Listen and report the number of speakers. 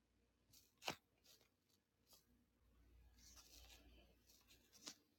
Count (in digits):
0